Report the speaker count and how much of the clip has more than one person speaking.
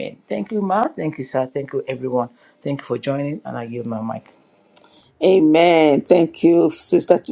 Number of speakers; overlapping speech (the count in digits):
2, no overlap